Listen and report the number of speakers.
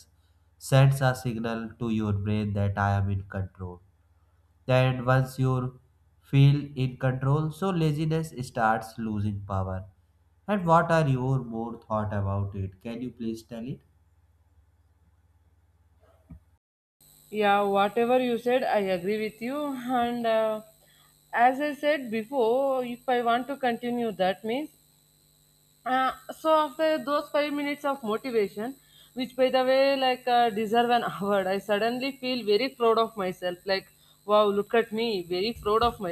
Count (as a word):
two